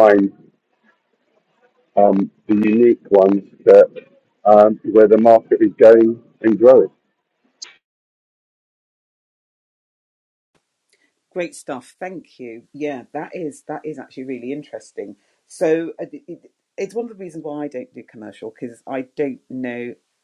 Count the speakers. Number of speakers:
2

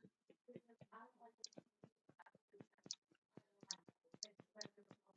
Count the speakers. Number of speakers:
0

